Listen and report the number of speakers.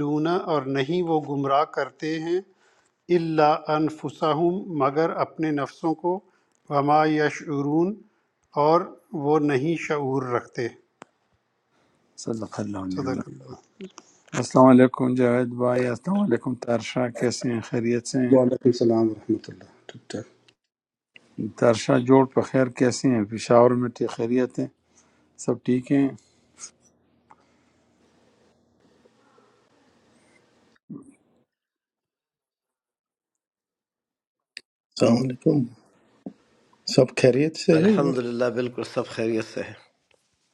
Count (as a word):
five